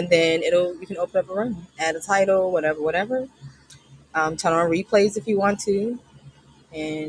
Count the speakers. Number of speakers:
1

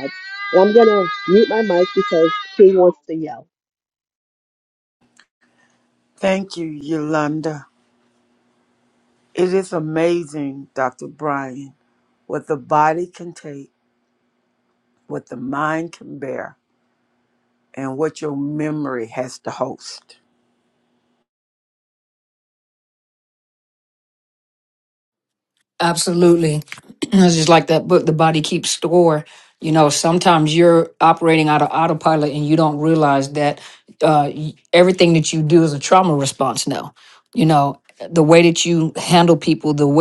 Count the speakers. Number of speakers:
3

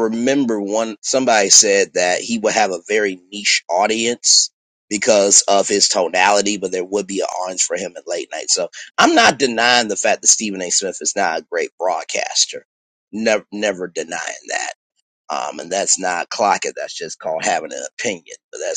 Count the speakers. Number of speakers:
1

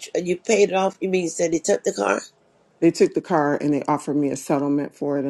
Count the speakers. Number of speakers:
2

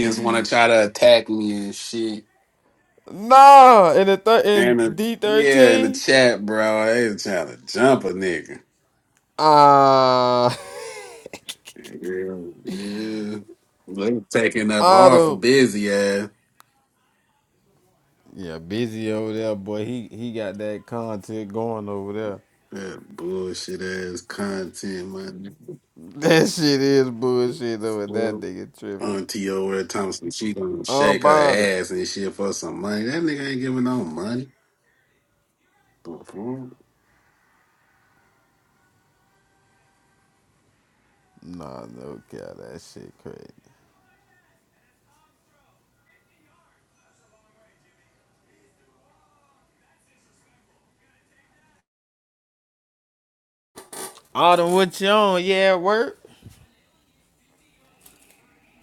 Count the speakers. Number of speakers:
2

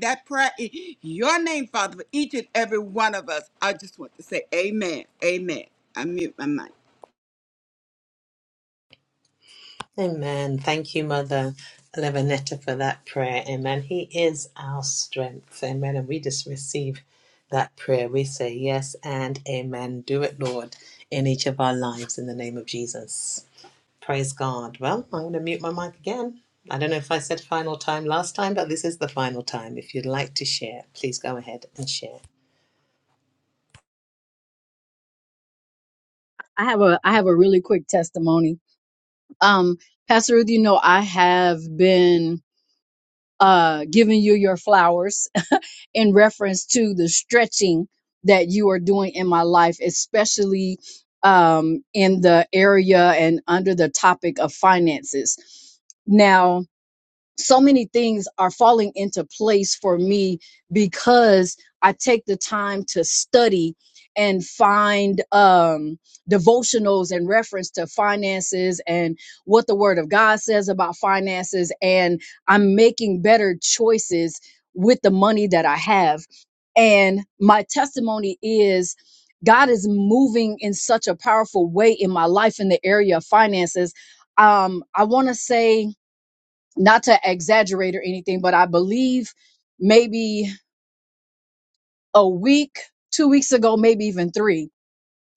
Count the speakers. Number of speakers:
3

